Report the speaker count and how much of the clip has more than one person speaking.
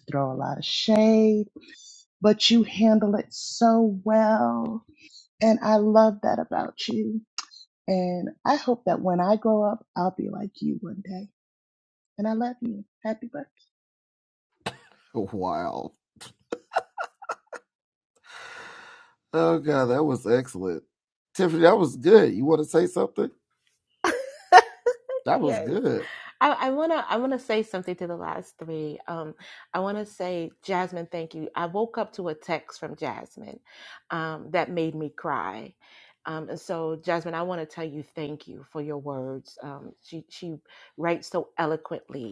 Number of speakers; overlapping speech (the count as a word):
three, about 1%